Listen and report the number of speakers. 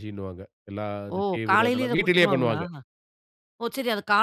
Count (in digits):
2